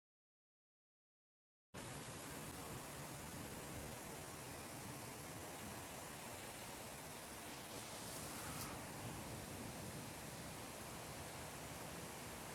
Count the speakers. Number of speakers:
zero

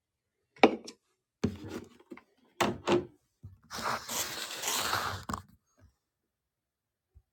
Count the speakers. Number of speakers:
zero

